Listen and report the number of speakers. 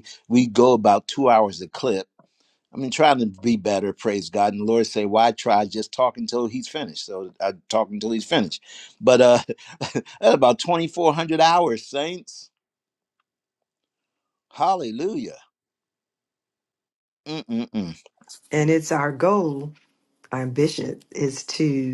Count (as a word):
two